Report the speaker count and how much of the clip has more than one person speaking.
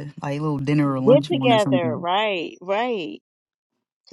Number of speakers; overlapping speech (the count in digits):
2, about 24%